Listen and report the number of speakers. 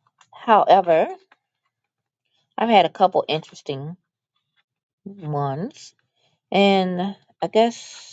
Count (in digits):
1